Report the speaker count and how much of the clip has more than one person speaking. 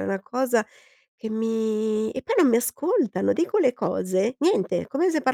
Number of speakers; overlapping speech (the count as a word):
one, no overlap